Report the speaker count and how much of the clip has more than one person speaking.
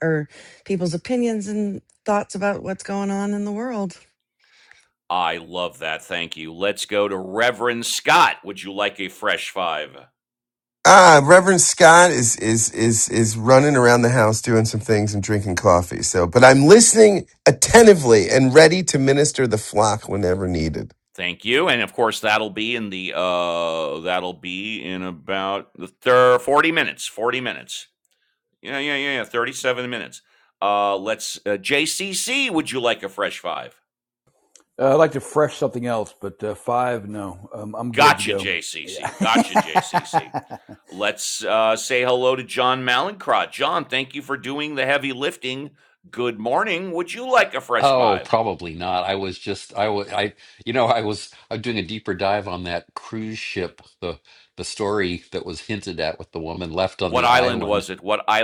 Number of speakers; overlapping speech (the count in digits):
5, about 4%